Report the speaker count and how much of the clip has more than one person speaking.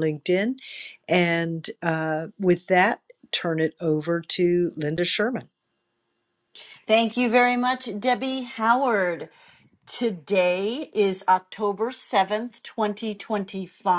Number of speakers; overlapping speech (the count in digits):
2, no overlap